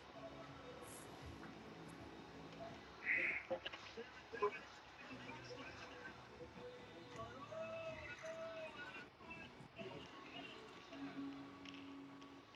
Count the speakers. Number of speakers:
zero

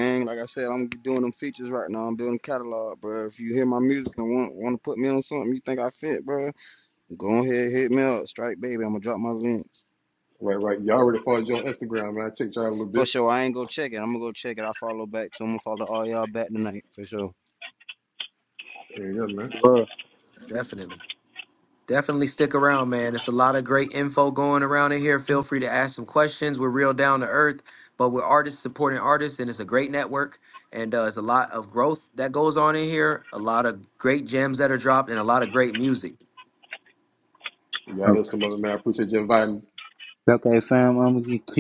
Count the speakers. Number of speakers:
four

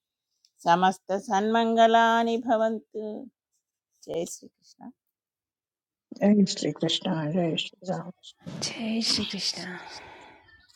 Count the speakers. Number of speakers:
three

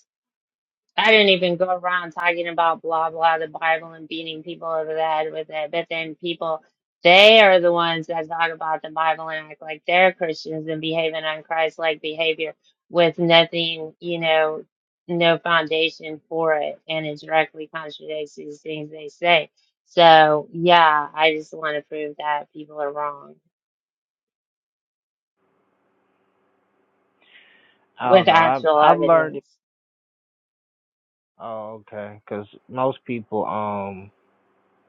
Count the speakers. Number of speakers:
two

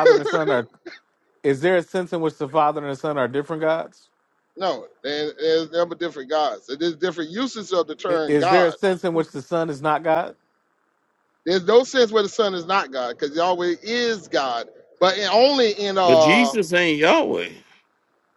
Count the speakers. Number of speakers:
three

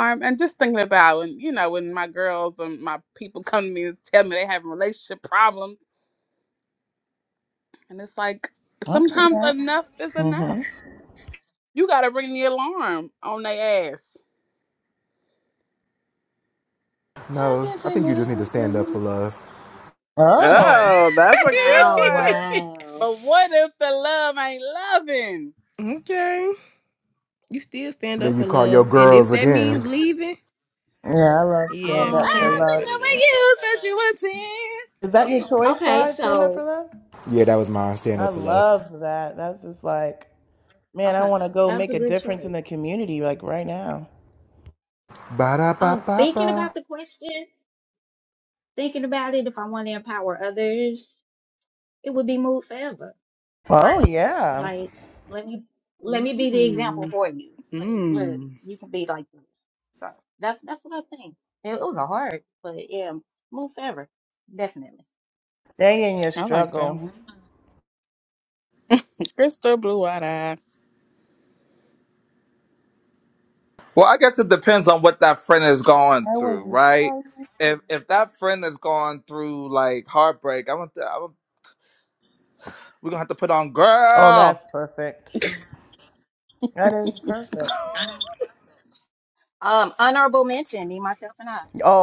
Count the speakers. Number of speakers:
six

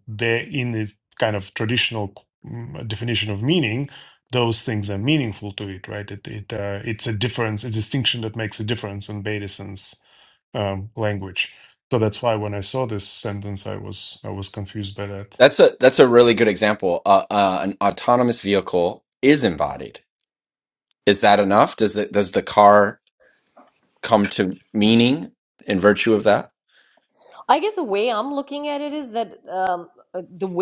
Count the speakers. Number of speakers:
three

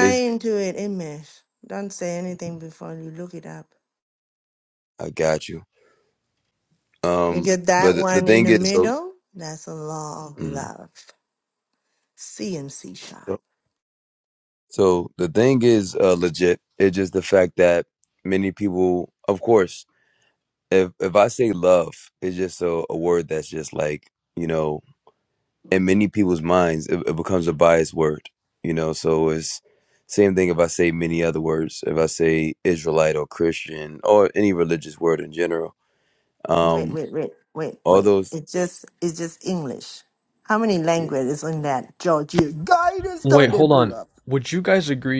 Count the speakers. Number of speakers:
three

